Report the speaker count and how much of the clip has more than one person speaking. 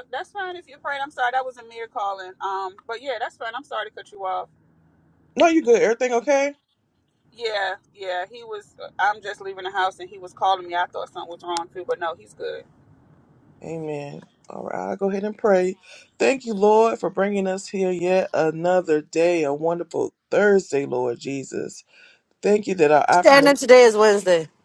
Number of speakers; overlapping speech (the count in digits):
3, about 2%